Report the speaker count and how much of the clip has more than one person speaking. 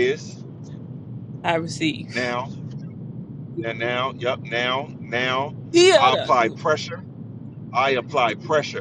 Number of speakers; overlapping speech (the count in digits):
2, about 8%